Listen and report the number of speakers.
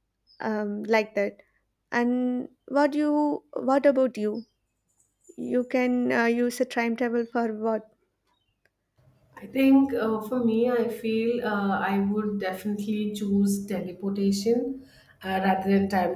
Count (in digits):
2